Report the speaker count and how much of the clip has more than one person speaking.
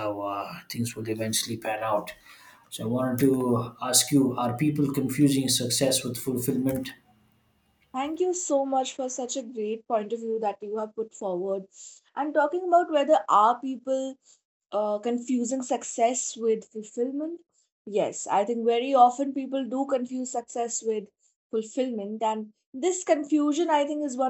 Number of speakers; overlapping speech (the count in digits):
2, no overlap